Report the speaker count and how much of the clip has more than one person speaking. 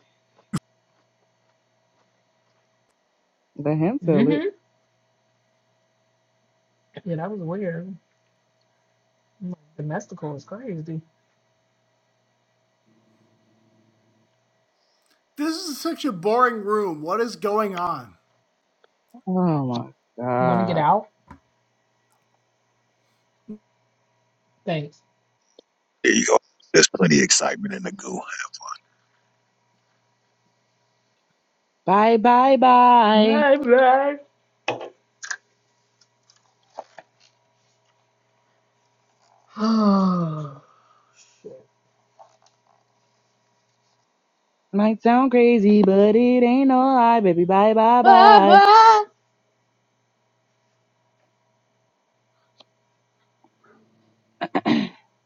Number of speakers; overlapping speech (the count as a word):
four, about 3%